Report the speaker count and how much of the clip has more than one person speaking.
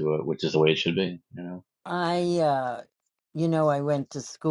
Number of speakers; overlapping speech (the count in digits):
2, no overlap